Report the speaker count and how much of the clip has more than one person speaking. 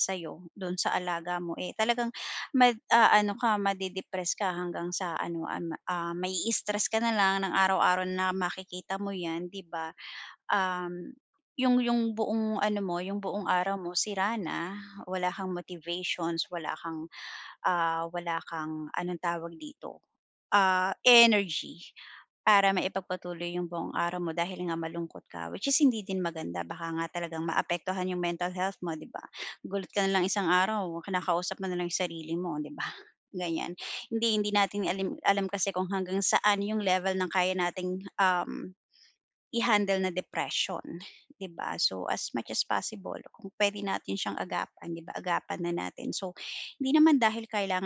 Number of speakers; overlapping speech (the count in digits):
1, no overlap